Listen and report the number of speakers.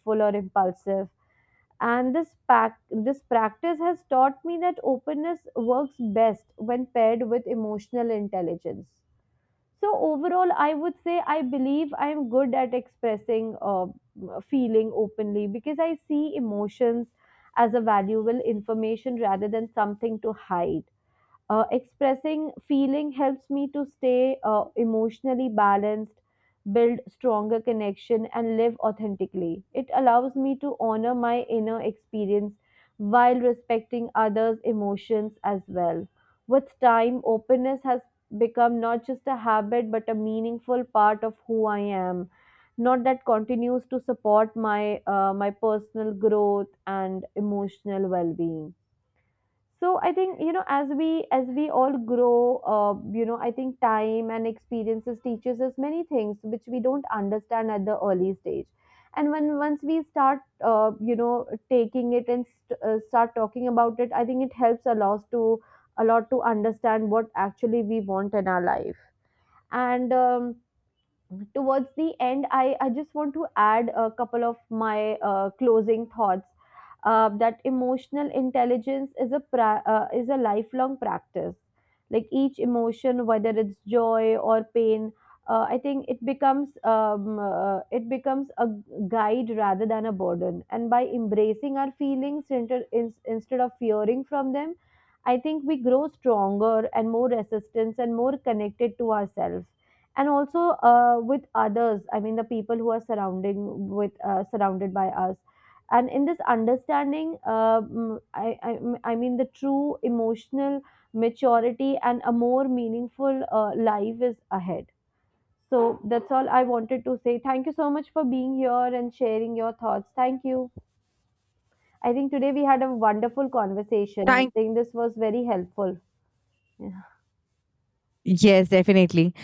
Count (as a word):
two